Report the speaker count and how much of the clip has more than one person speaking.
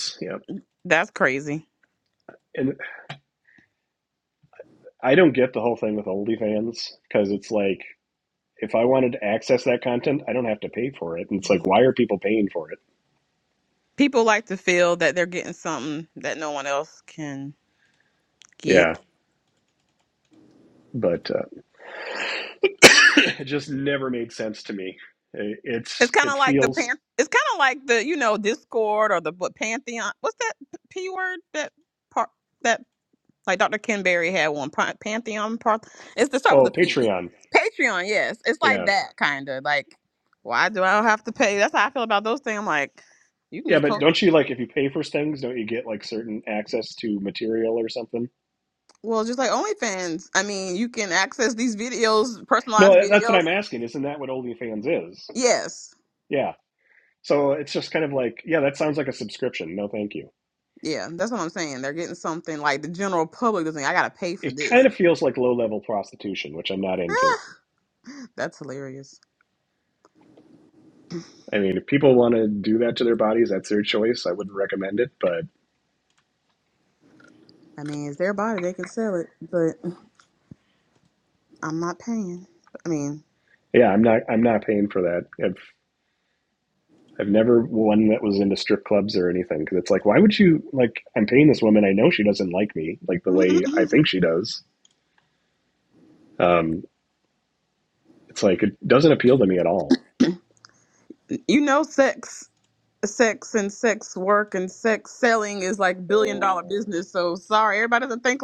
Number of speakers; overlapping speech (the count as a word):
two, about 3%